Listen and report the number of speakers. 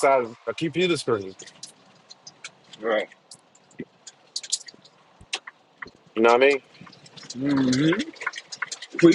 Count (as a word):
two